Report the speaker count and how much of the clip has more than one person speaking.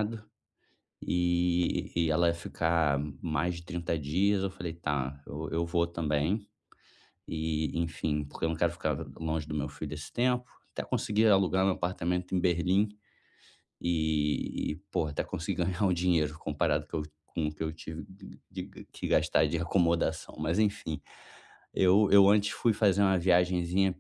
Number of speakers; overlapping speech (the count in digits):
1, no overlap